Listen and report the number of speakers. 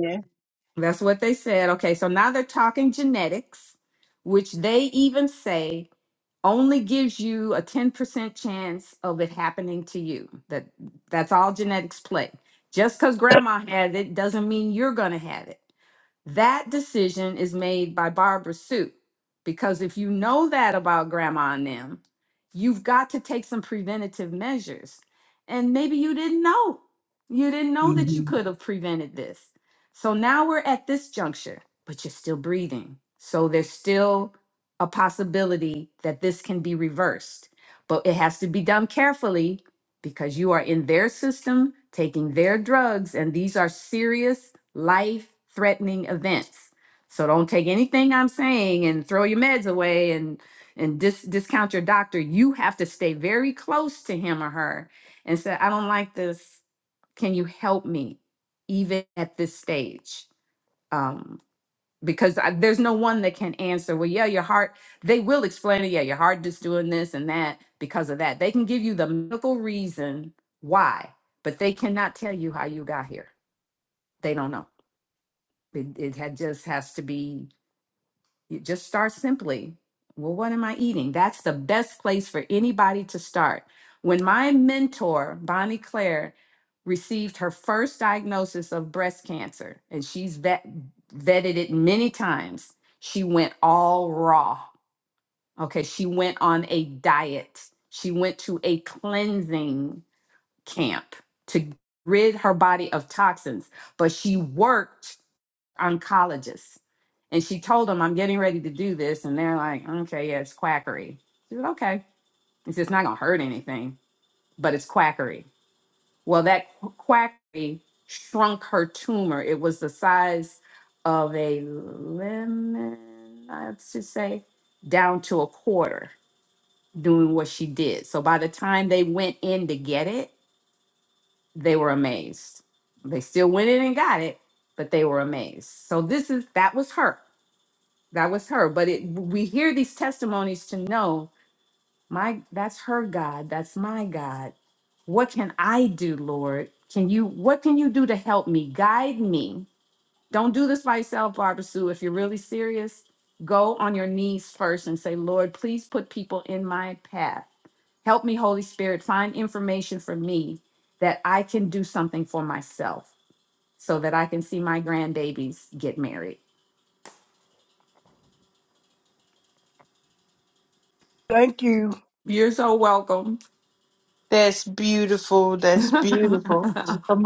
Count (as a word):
three